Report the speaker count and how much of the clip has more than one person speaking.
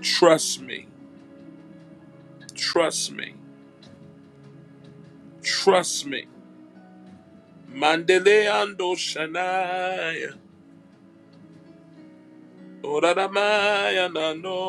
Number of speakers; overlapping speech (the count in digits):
1, no overlap